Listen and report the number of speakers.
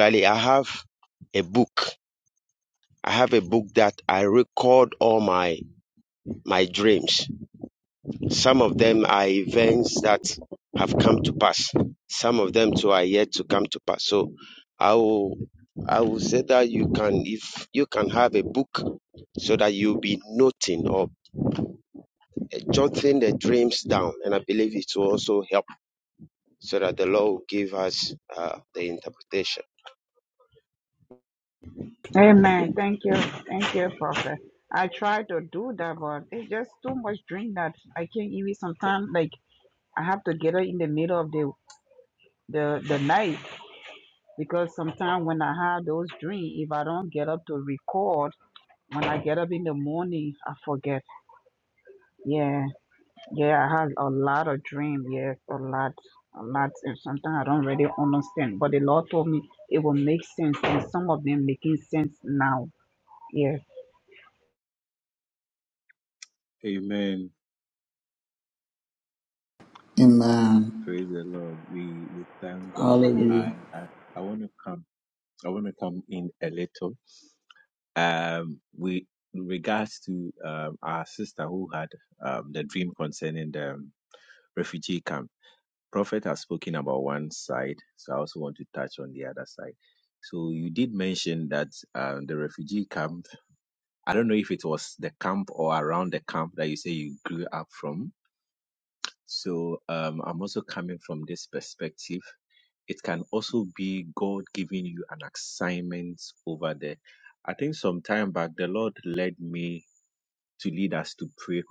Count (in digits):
4